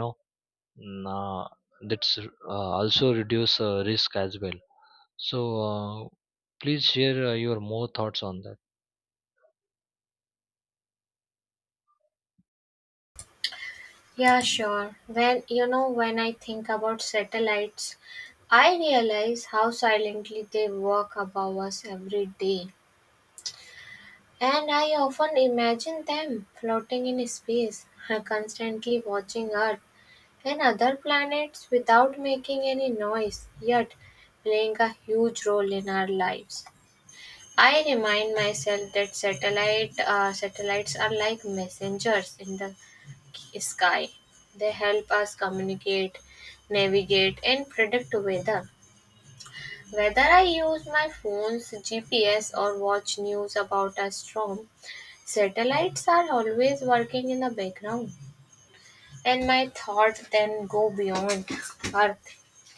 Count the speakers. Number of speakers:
2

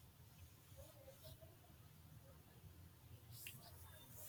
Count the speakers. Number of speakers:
0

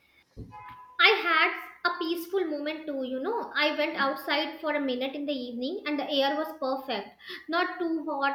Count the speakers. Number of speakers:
1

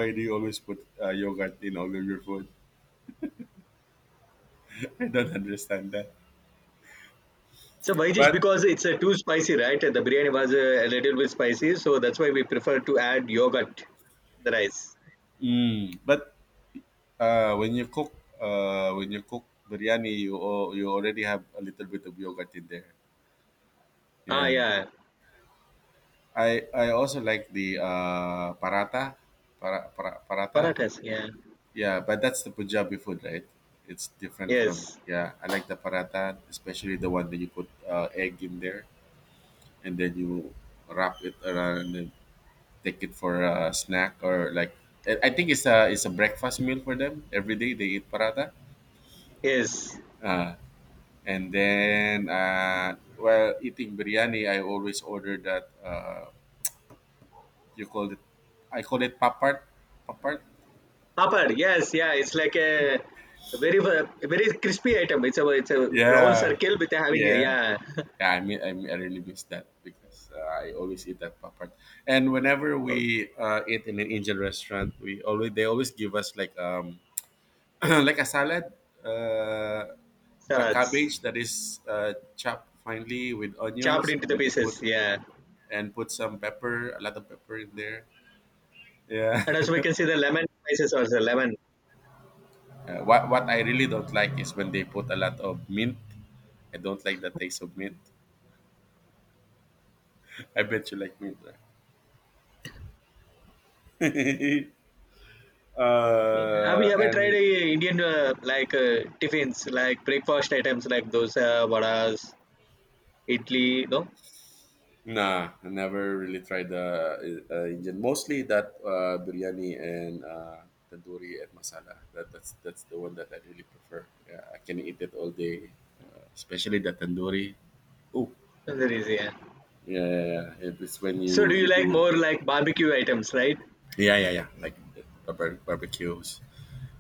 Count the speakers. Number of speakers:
2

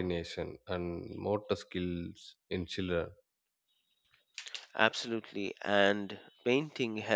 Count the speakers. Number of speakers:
2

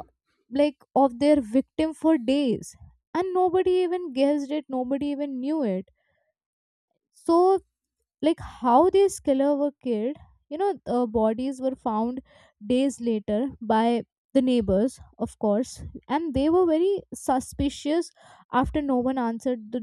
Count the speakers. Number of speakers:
1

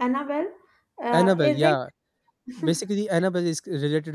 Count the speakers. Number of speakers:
2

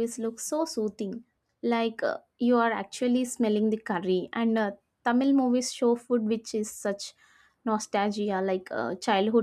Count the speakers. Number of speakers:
1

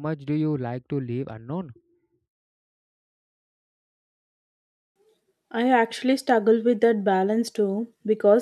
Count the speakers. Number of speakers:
2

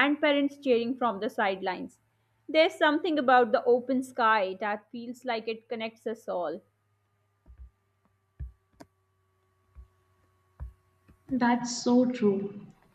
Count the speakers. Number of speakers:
2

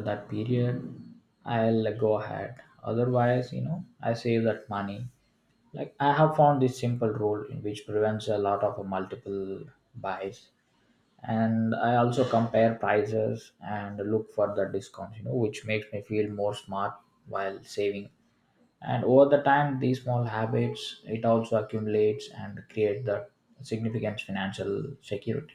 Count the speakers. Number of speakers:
1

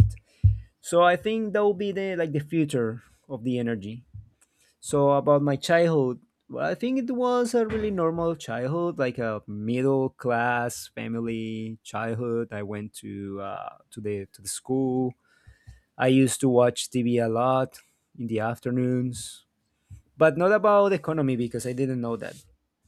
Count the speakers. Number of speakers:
1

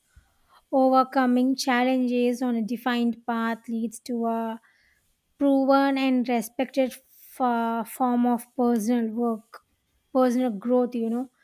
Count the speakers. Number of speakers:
1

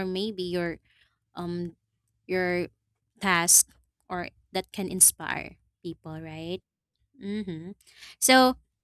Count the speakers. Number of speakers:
1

